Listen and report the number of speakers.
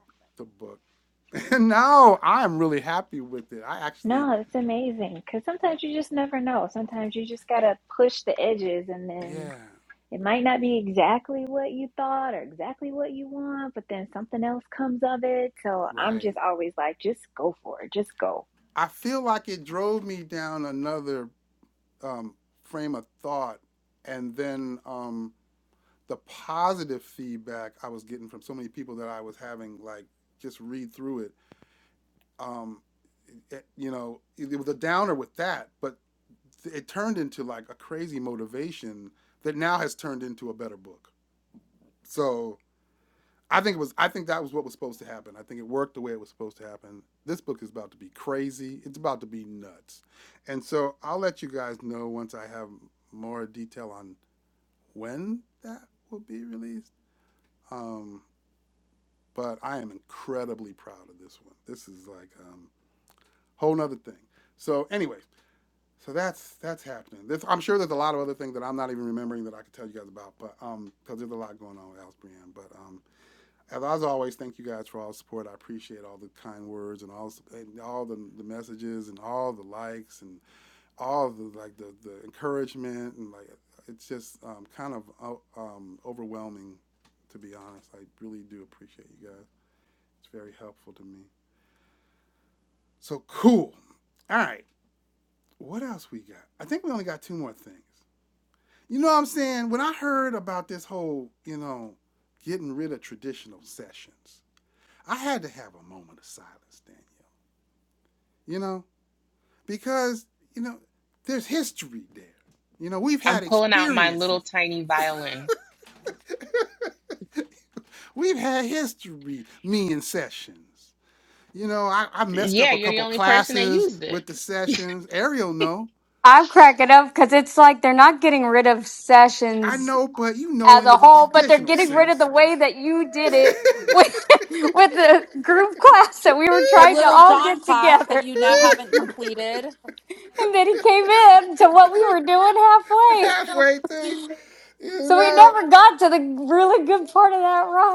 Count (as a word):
five